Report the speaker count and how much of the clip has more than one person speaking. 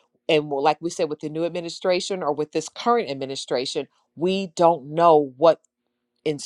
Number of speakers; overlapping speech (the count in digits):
1, no overlap